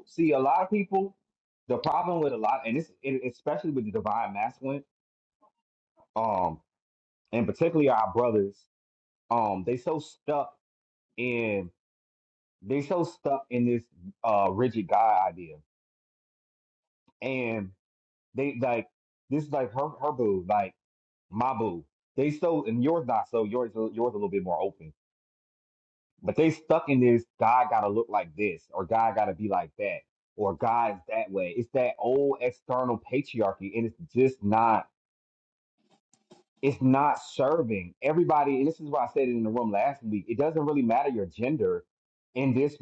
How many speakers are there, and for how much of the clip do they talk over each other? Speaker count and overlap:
1, no overlap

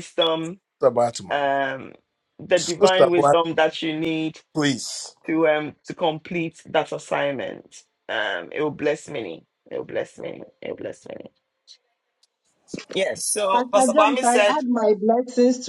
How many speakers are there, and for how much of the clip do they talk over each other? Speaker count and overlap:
3, about 12%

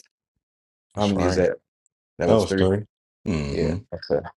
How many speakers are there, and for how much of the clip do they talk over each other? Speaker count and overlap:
2, about 27%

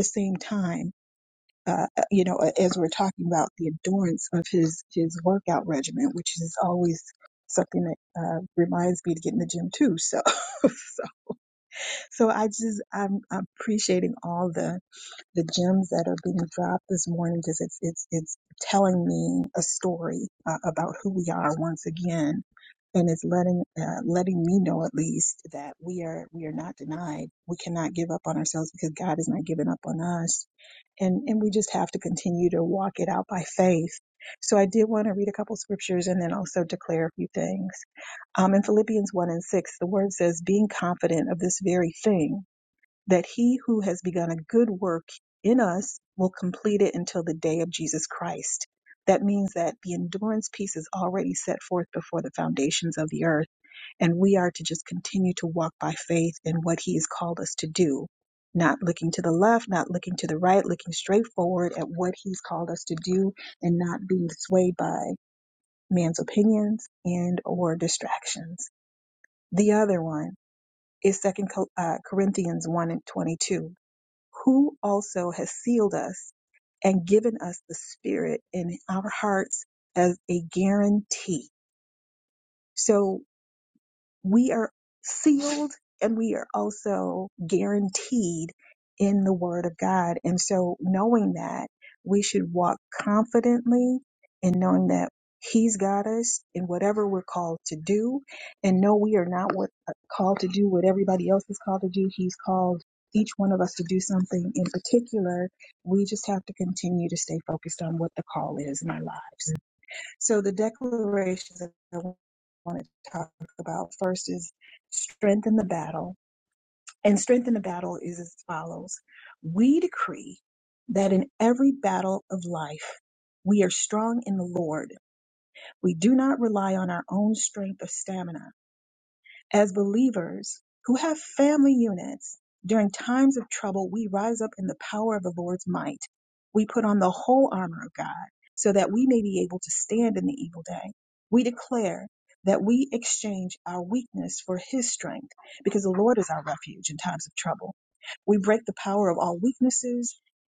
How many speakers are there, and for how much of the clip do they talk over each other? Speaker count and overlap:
1, no overlap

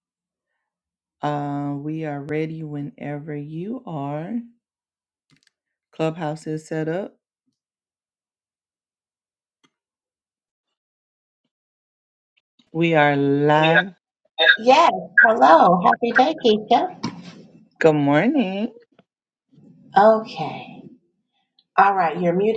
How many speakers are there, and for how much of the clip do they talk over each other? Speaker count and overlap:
2, no overlap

